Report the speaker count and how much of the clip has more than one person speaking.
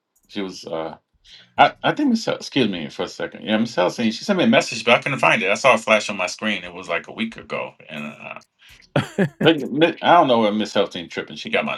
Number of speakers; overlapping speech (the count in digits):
1, no overlap